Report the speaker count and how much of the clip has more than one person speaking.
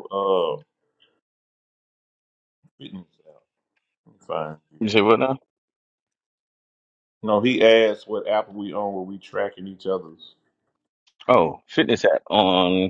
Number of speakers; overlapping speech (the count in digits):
2, no overlap